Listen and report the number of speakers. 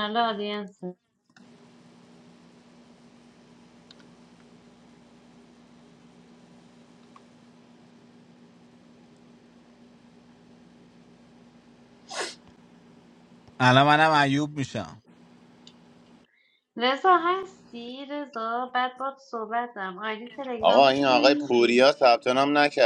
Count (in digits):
3